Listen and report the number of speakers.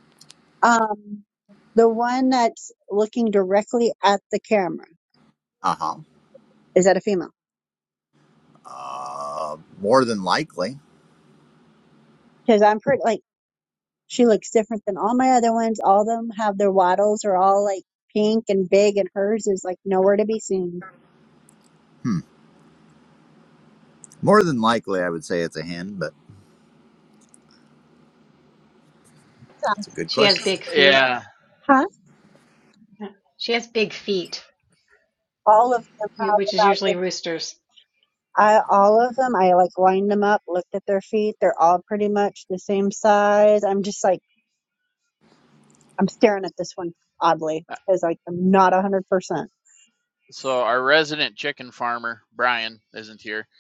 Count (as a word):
four